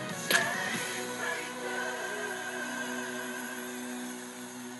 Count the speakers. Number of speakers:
0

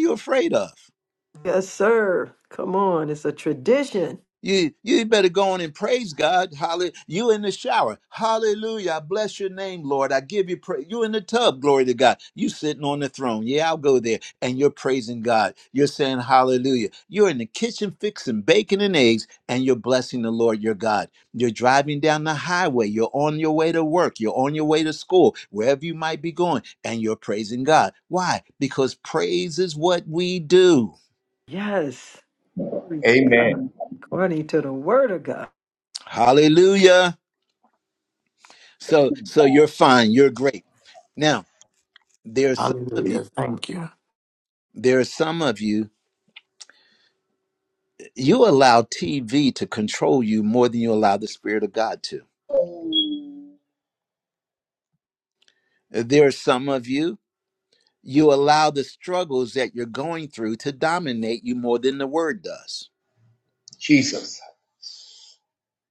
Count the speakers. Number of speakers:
4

